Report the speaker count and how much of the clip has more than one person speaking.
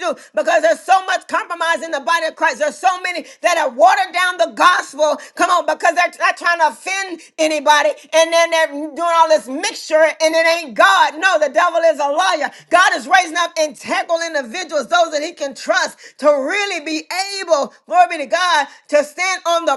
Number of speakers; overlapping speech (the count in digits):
1, no overlap